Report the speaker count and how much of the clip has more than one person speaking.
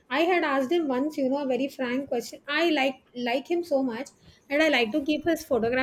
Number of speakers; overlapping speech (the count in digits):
1, no overlap